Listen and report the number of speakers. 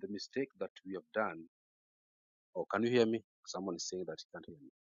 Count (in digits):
1